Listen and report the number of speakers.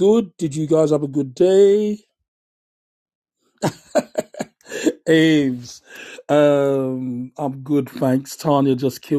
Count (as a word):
one